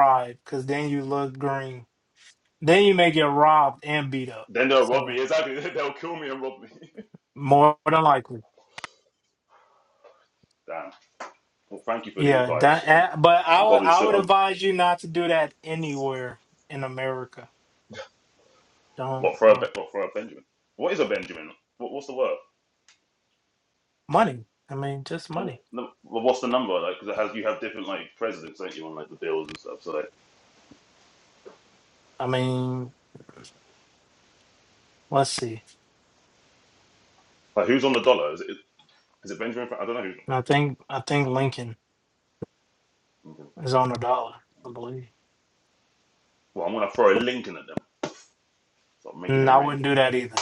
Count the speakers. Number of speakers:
2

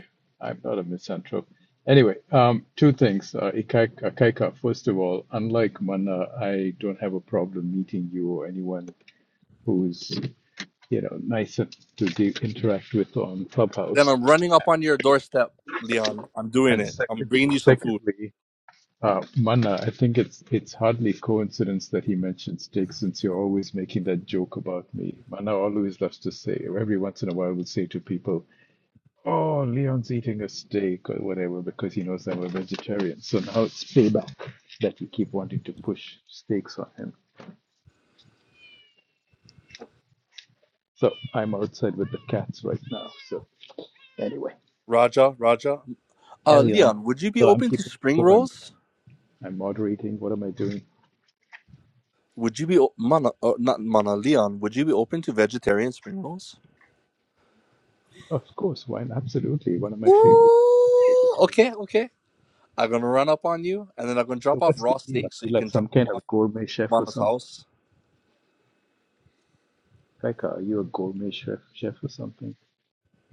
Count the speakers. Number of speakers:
2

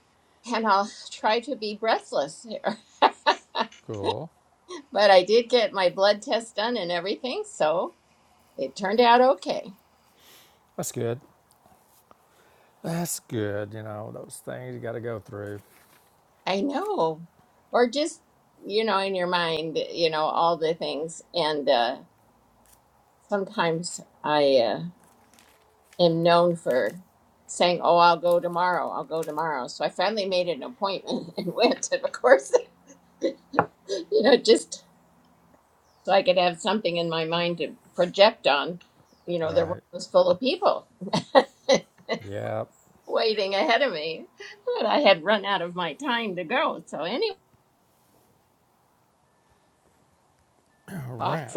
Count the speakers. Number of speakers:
2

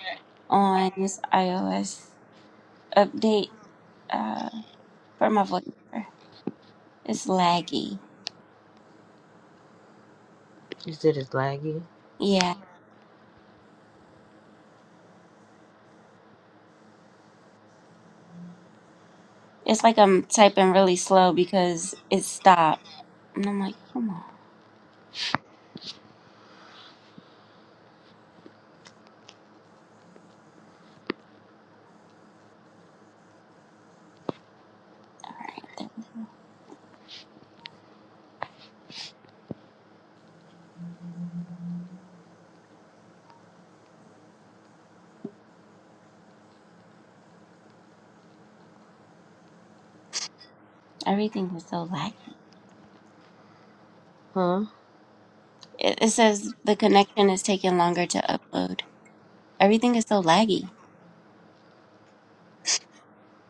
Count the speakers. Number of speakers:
2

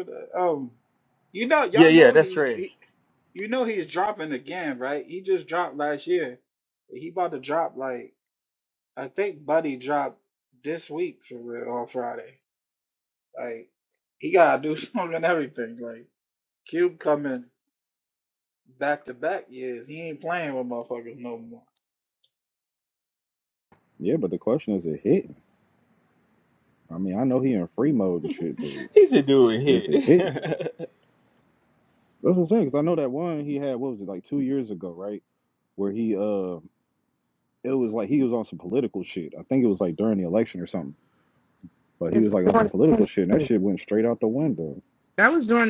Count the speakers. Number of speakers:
4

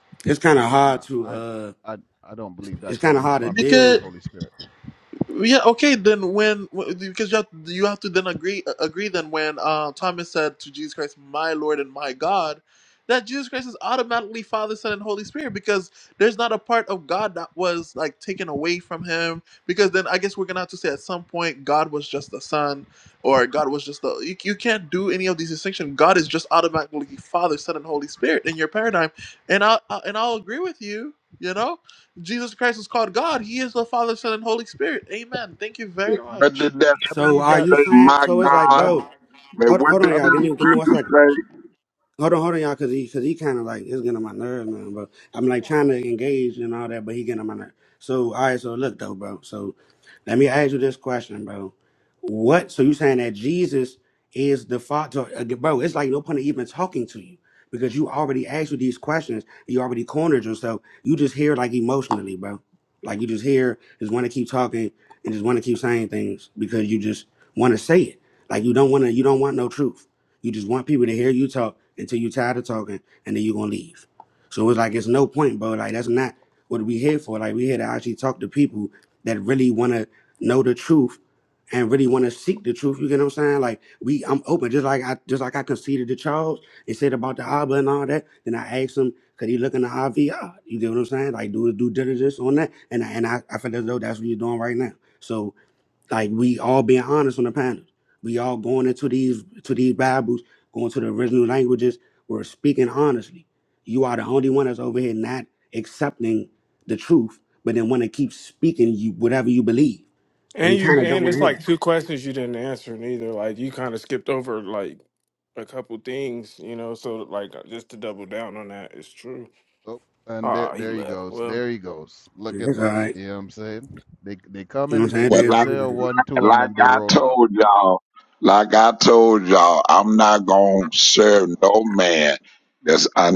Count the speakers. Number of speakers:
5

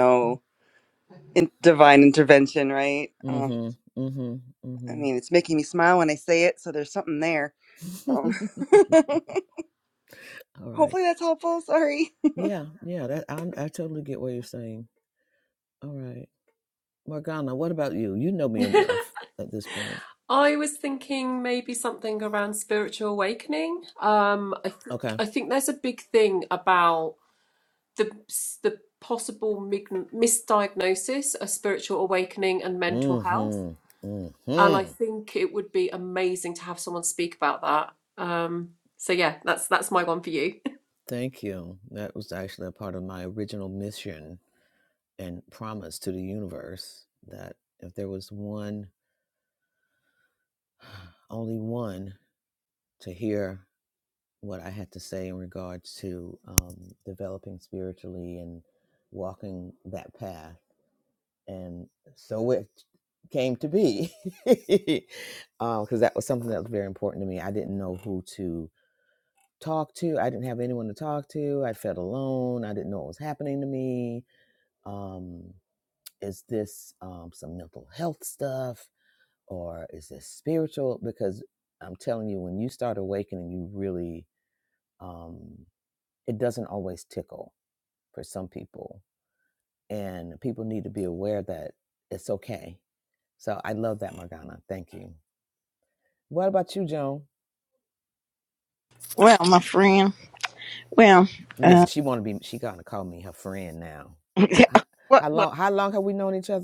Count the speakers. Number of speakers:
4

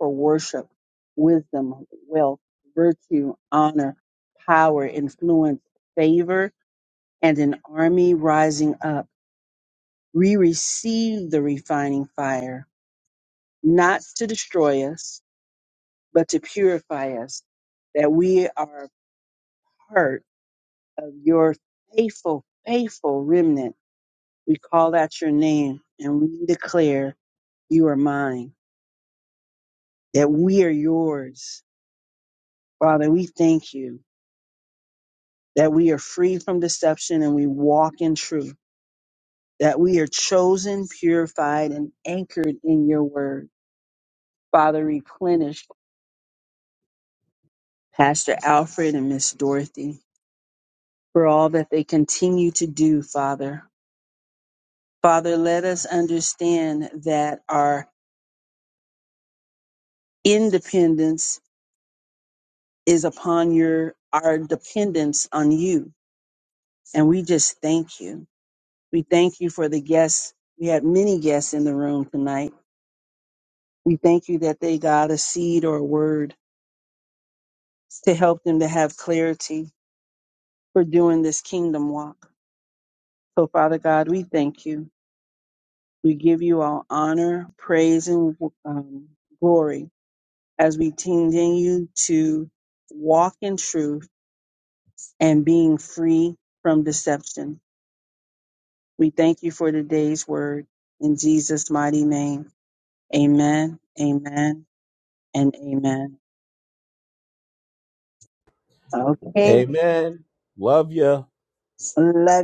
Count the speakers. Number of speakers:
2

